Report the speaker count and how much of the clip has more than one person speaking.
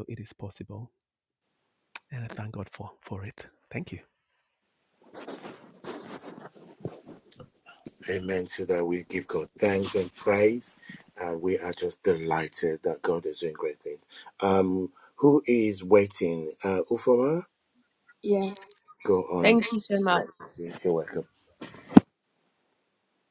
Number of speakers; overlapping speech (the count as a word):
three, about 1%